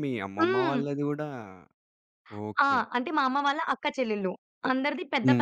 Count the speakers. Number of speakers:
two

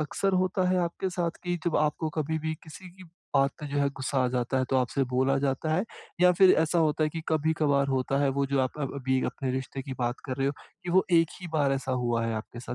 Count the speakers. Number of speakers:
one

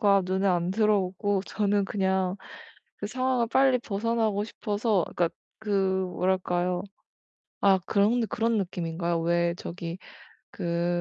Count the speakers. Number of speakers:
one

